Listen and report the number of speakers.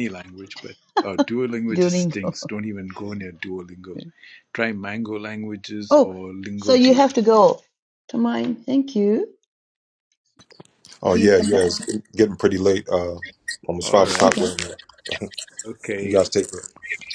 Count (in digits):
3